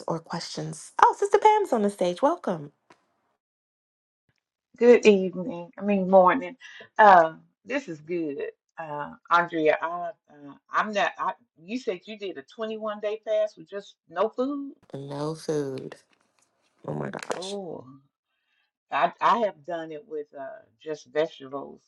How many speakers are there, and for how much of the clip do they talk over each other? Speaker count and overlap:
two, about 1%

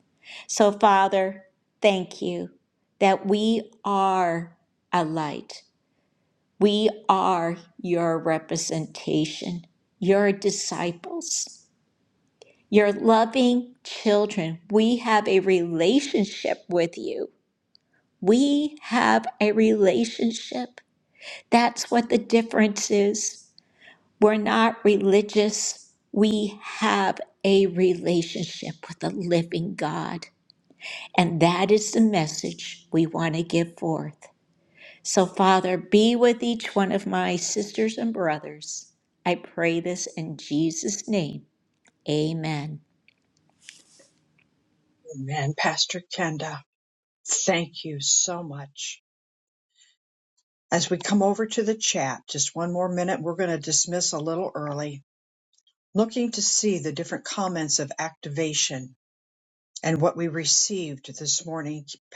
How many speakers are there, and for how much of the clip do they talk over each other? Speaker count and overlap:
two, no overlap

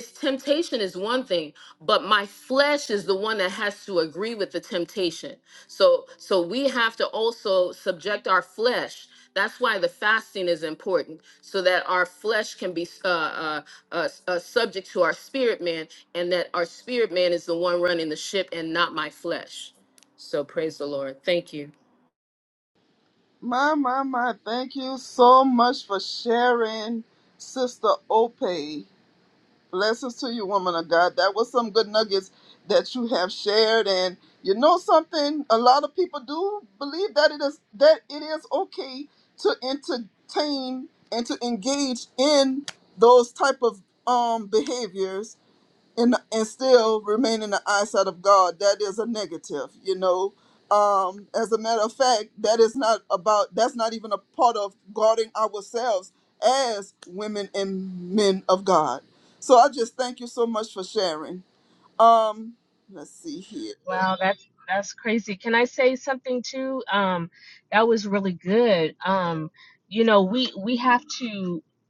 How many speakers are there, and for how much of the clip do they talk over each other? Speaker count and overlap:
three, no overlap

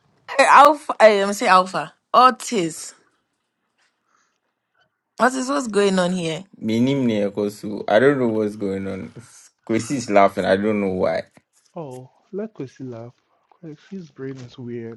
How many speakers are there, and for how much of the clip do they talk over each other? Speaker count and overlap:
three, no overlap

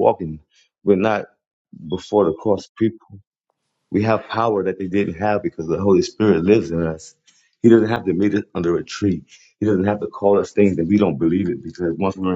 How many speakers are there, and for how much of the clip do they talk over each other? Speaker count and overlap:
one, no overlap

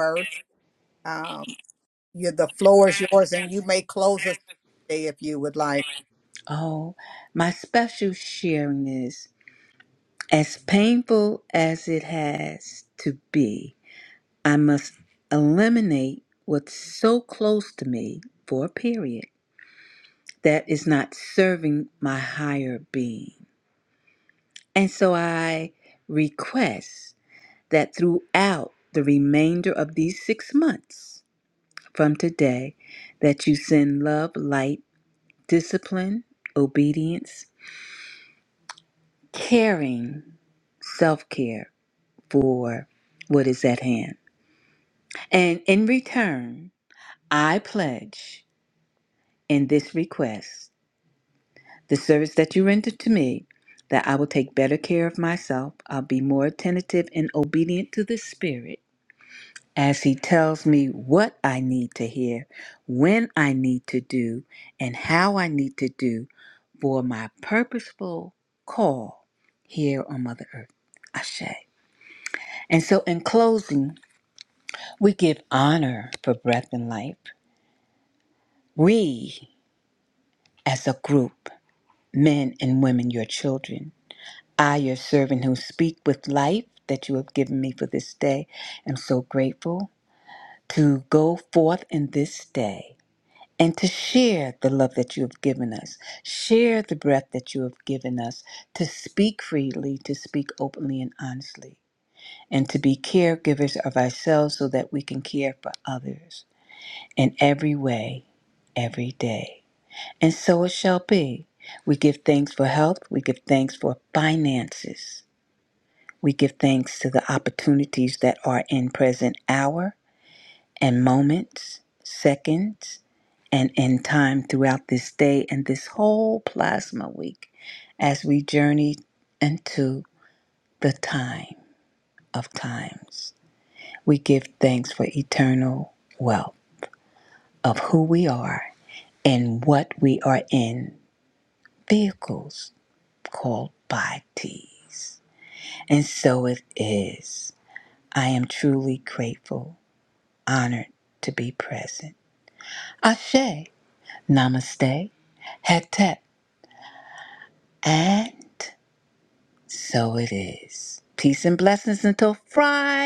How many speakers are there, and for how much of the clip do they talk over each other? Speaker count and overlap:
two, no overlap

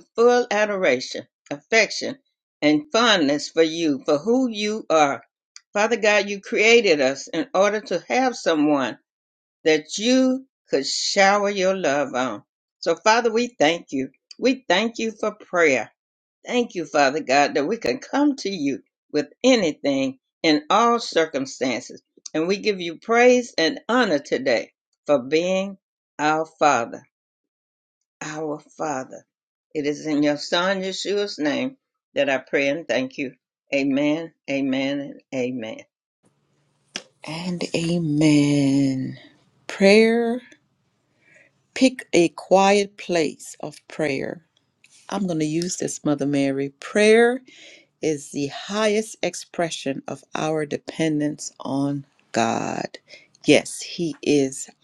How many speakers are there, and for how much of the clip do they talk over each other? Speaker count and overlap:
two, no overlap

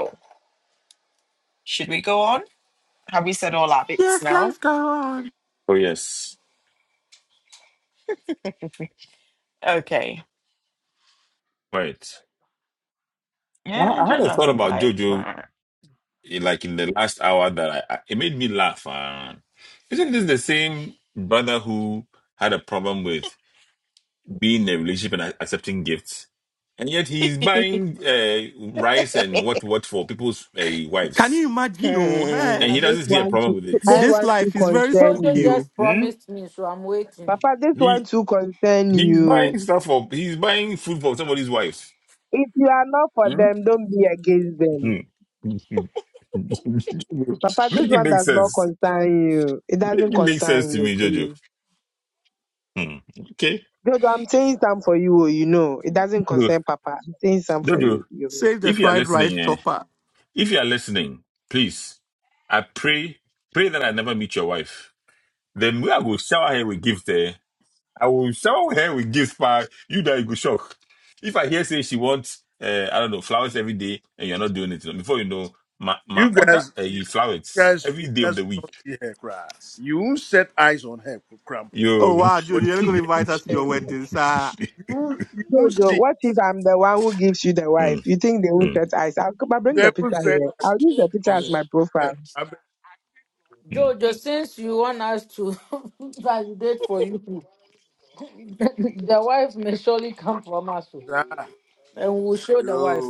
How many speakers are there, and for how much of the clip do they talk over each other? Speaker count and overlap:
six, about 16%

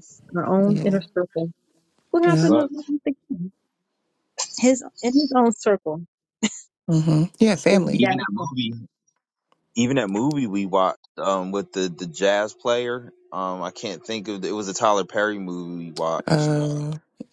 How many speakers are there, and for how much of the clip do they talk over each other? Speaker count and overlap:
three, about 10%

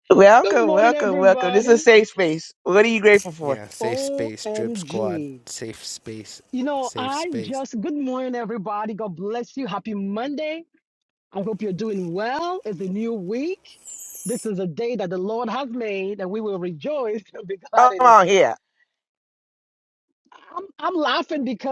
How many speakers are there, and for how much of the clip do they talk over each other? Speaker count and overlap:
three, about 17%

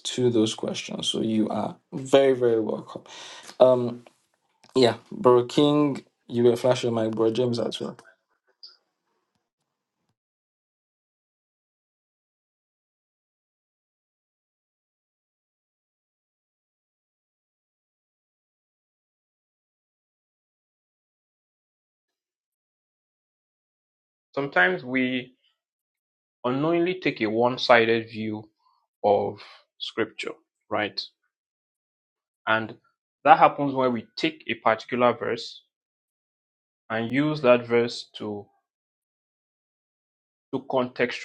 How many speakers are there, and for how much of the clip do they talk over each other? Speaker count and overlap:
two, no overlap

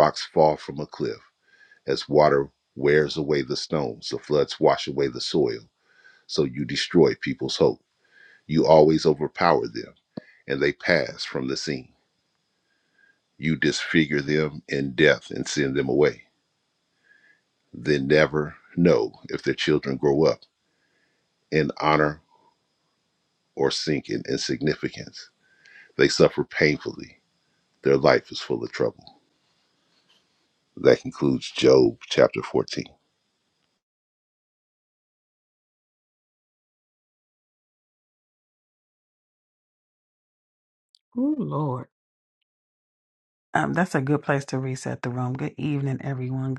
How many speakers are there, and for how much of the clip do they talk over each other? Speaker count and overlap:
two, no overlap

